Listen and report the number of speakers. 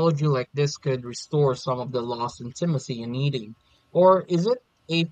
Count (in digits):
1